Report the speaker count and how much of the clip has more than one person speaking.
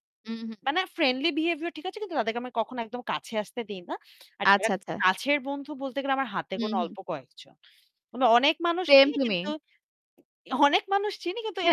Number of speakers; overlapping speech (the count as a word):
two, about 14%